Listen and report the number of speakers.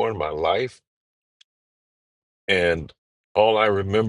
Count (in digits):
1